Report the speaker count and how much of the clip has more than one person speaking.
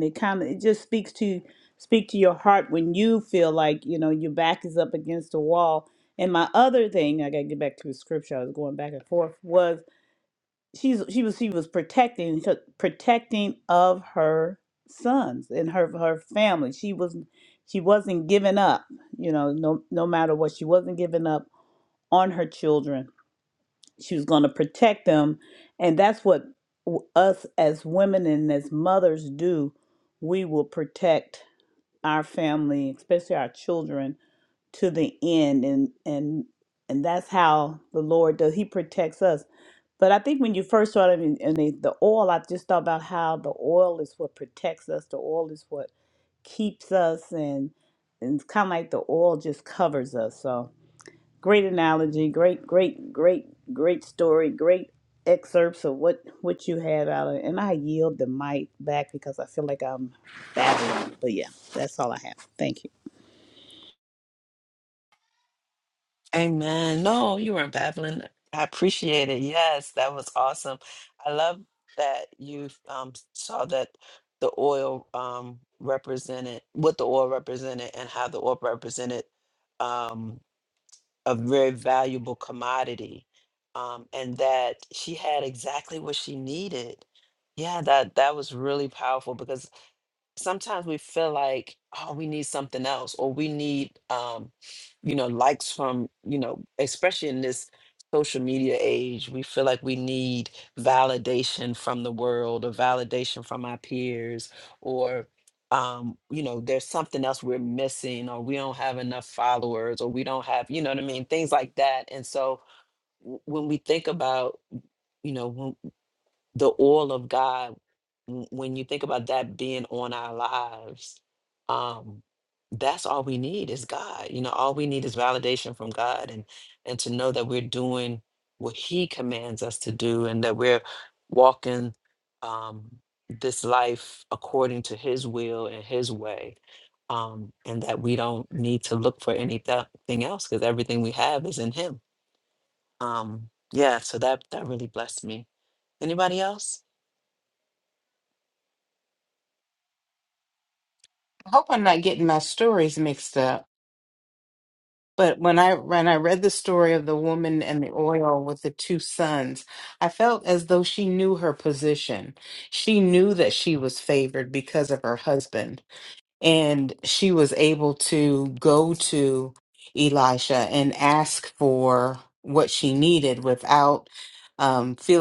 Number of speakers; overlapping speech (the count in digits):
3, no overlap